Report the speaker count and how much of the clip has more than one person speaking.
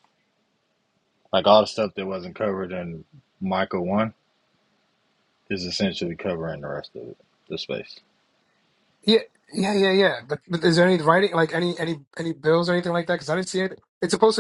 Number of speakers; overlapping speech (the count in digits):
2, no overlap